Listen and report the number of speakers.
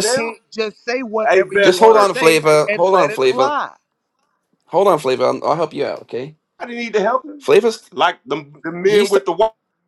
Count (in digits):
3